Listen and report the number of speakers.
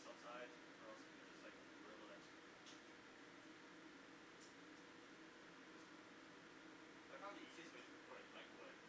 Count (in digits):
1